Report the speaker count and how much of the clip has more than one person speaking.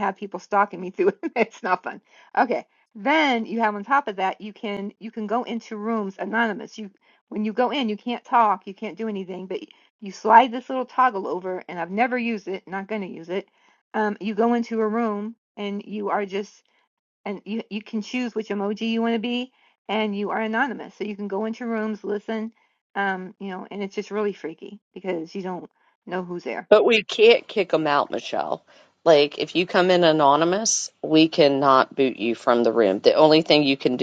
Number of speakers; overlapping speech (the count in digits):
2, no overlap